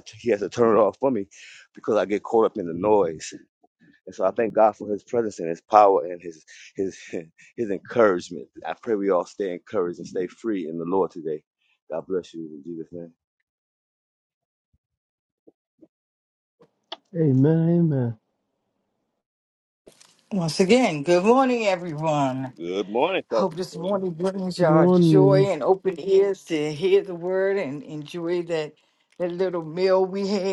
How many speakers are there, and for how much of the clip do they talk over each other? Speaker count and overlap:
three, about 3%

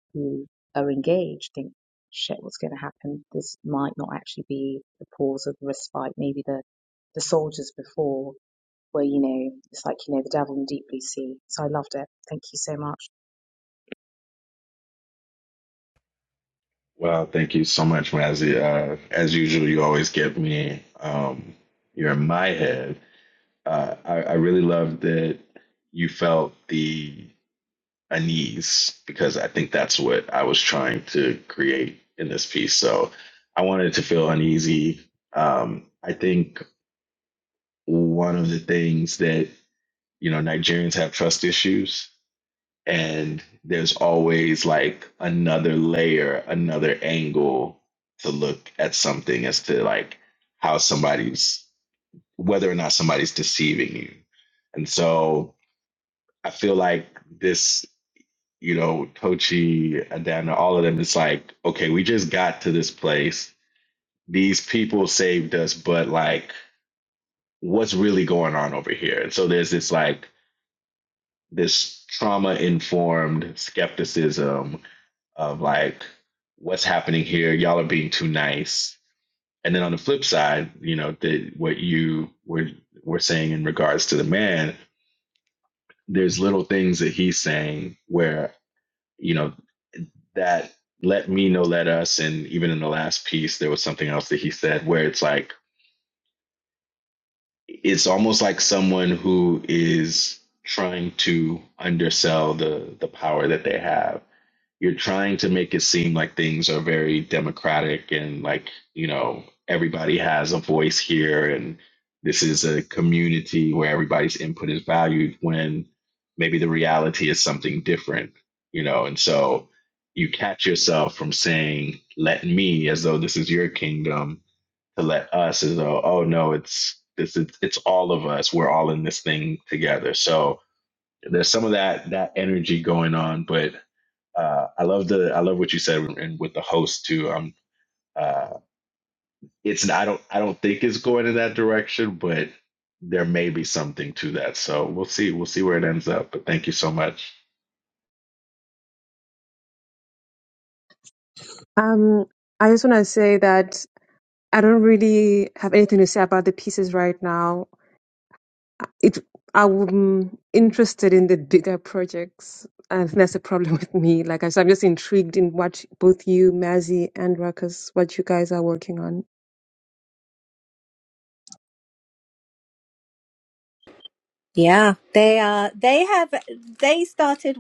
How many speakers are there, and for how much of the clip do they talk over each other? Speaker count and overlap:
four, no overlap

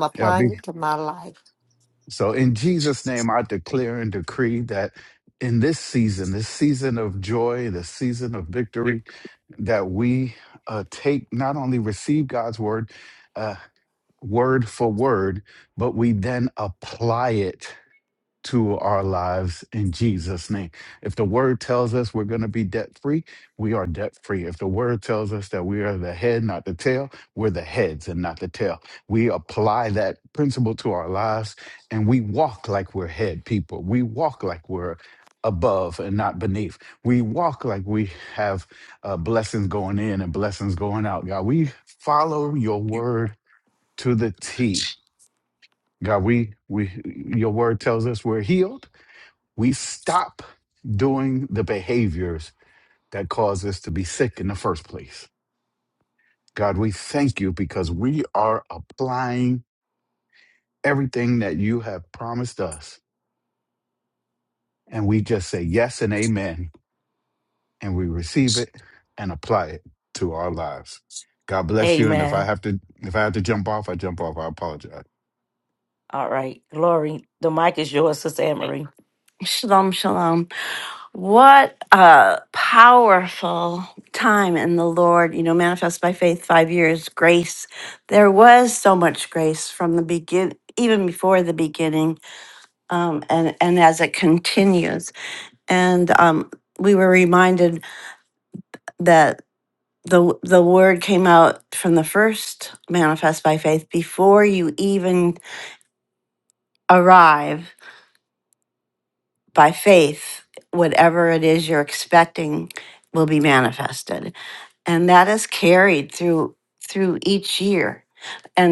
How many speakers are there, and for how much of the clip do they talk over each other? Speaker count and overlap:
four, about 1%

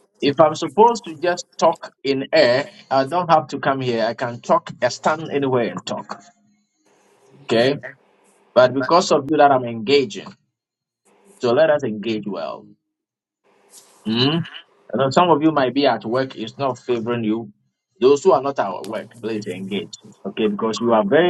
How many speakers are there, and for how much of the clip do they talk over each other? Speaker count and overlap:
one, no overlap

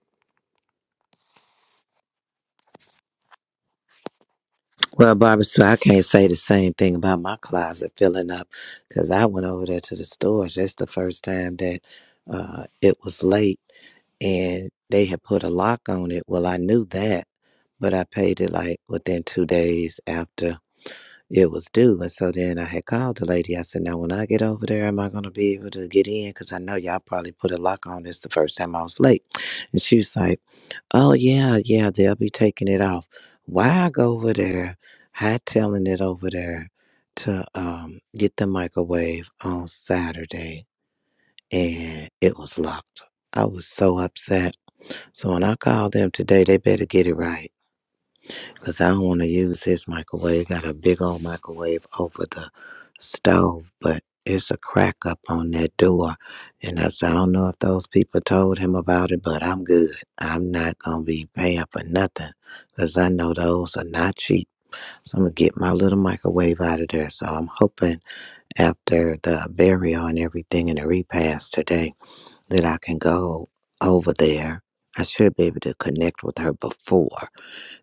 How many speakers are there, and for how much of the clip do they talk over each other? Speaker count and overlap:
one, no overlap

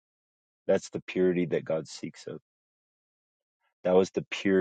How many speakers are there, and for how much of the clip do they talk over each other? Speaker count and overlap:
one, no overlap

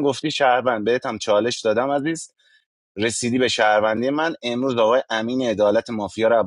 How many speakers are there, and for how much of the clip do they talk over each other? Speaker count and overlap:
one, no overlap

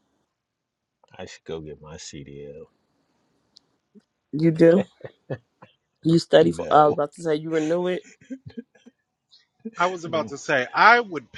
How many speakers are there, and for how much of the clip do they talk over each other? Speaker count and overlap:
three, about 7%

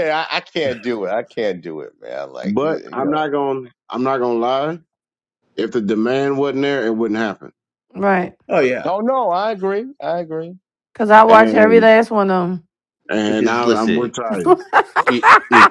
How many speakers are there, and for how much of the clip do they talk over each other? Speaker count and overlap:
four, about 15%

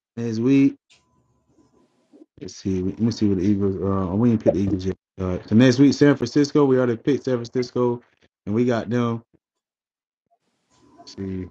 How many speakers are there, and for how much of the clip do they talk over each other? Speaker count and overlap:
one, no overlap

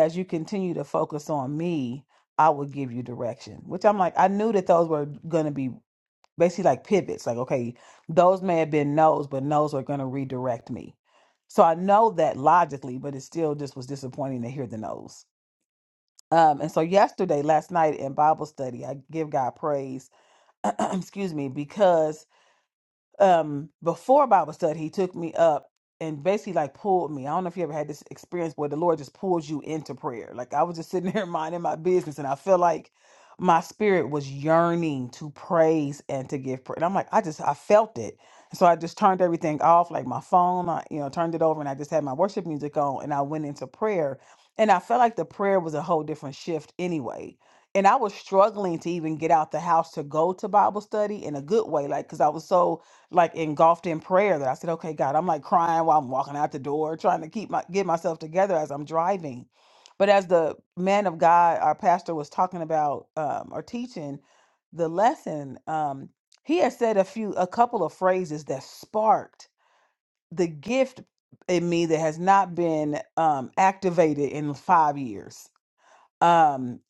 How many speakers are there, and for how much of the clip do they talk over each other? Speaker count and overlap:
one, no overlap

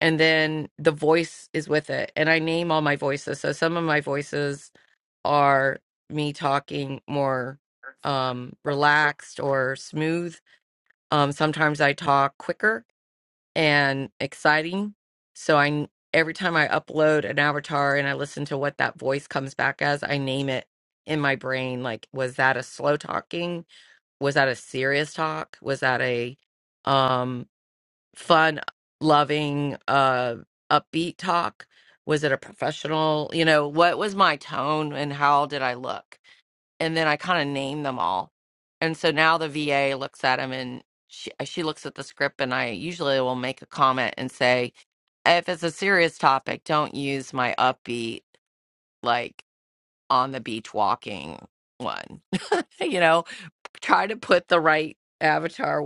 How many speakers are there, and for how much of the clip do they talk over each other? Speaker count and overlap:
one, no overlap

